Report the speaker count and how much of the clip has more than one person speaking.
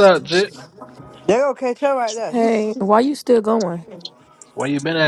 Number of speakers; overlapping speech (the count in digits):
3, about 4%